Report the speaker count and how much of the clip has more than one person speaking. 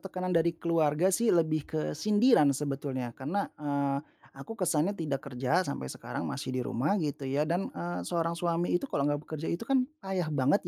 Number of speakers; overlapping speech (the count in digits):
1, no overlap